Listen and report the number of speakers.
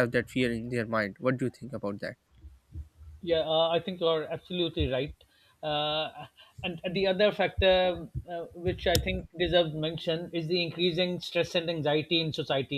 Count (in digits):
2